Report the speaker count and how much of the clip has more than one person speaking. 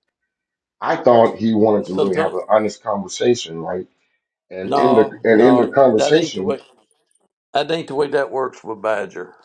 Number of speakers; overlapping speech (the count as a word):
two, about 25%